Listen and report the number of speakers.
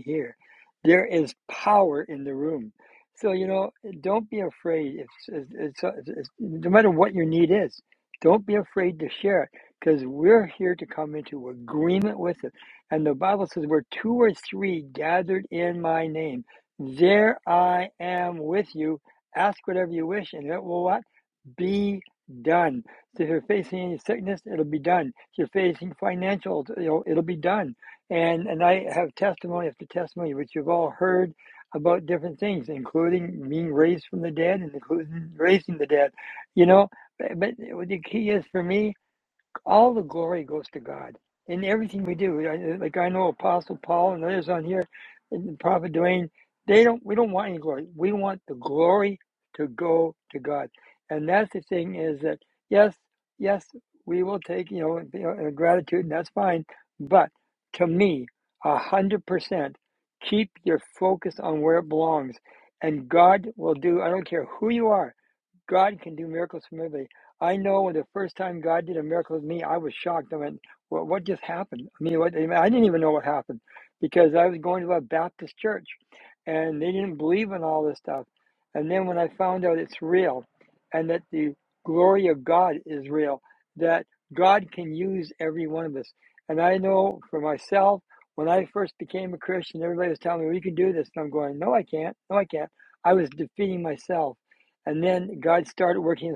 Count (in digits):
1